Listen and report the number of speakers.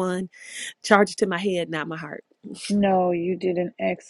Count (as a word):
two